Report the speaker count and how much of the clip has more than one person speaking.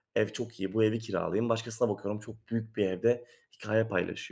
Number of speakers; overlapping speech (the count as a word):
one, no overlap